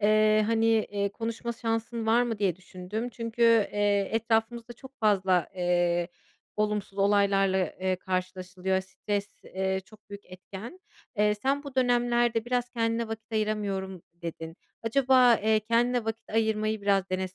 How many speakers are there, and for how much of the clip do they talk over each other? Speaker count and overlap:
one, no overlap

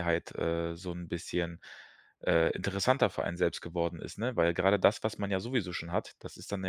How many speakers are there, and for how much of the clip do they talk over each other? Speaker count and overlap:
one, no overlap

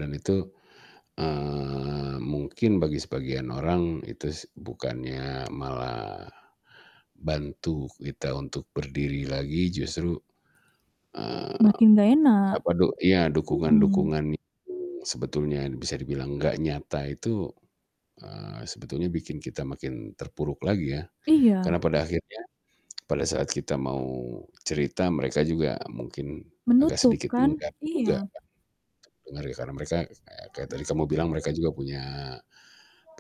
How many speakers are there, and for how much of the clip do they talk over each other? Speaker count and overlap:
two, about 7%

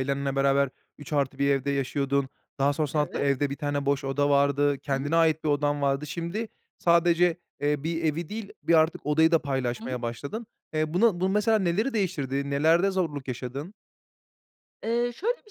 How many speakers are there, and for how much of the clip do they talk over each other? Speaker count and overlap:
two, about 4%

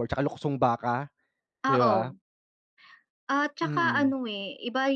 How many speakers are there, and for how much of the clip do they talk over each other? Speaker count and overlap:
two, about 18%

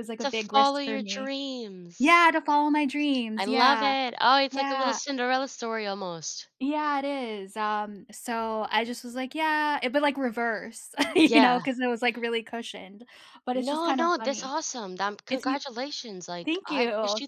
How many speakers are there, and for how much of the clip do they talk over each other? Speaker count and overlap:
two, about 27%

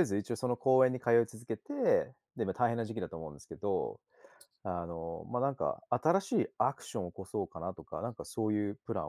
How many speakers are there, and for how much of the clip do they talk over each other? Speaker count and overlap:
one, no overlap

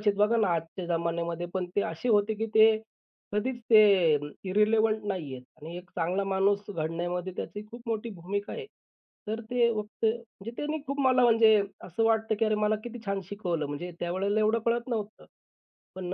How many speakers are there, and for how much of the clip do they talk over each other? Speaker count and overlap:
one, no overlap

